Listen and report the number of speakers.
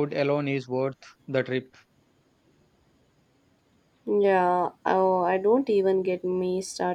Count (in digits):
2